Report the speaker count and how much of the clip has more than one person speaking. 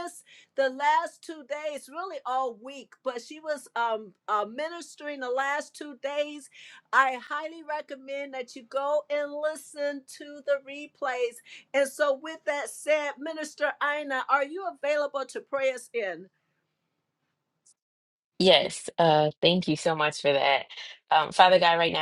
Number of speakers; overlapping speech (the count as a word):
two, no overlap